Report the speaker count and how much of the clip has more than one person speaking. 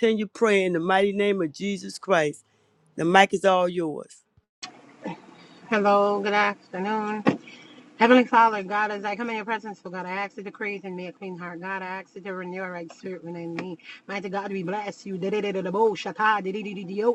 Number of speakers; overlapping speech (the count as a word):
two, no overlap